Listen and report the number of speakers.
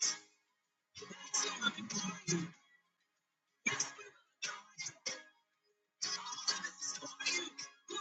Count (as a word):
zero